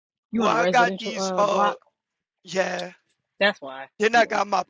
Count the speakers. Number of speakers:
two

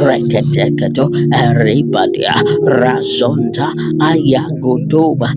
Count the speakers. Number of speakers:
one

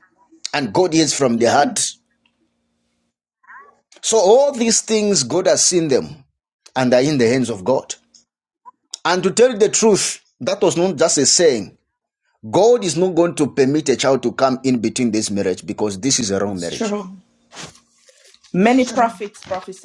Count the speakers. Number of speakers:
two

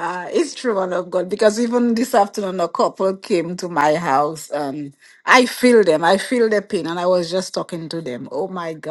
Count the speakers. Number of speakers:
one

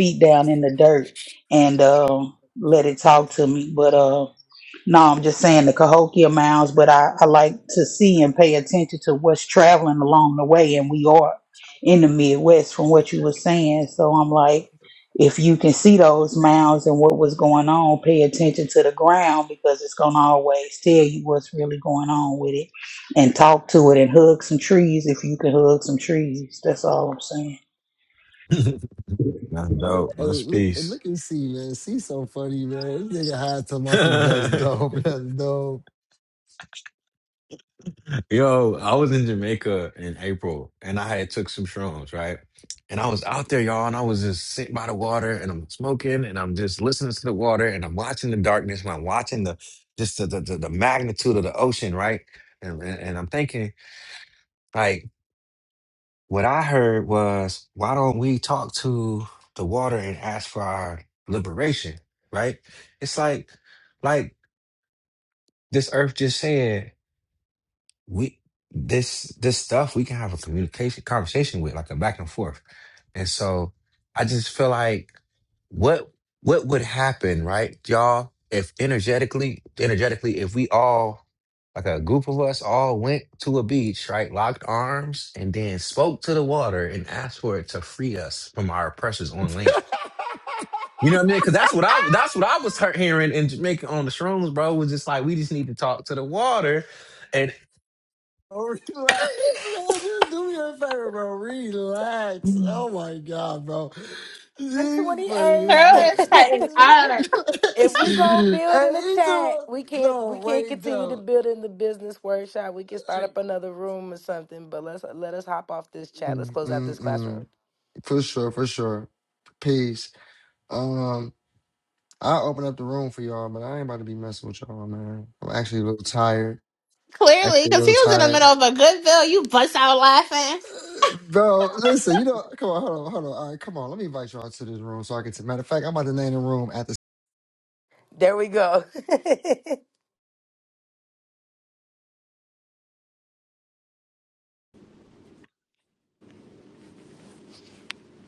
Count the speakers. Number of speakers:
five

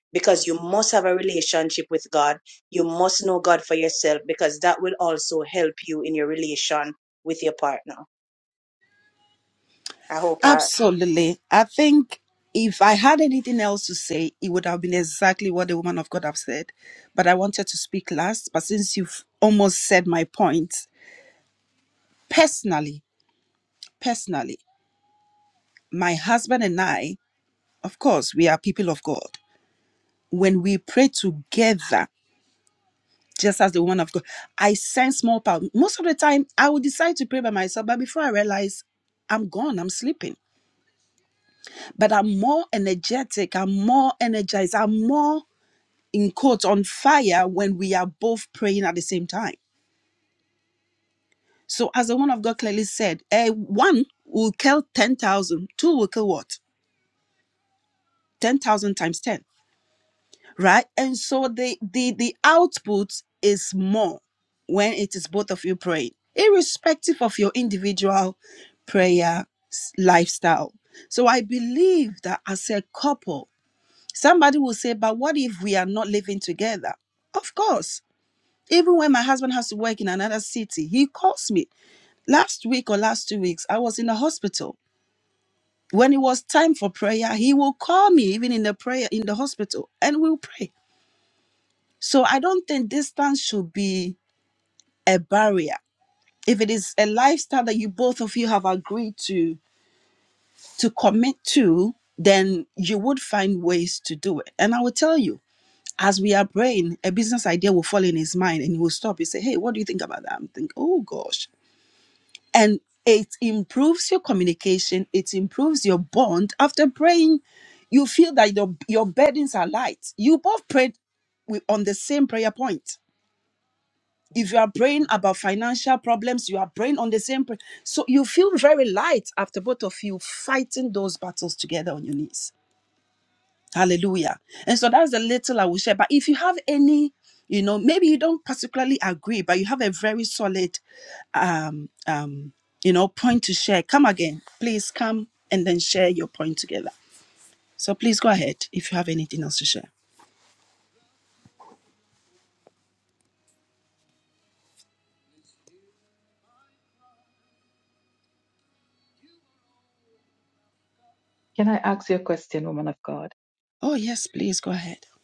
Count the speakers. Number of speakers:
three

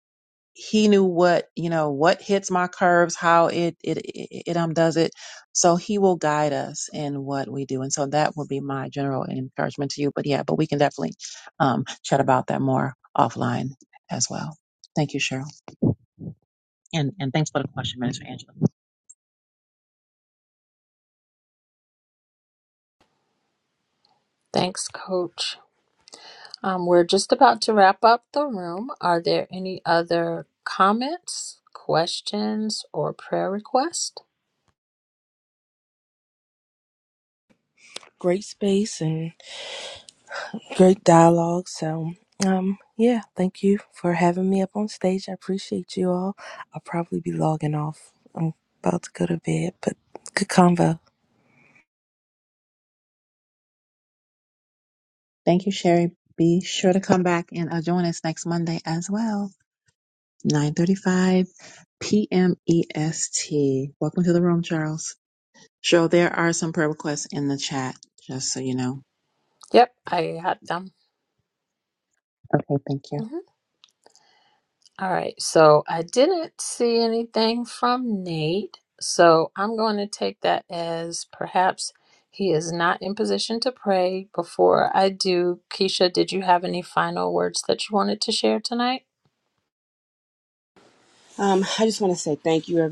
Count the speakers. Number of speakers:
four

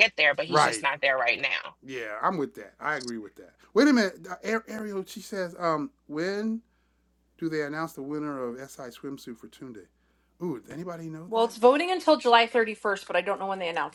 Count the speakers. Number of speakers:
three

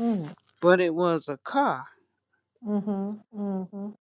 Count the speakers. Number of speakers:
two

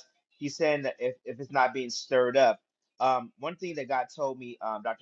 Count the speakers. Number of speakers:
one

